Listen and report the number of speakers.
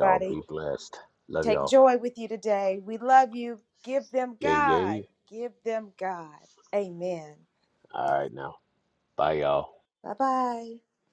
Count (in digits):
2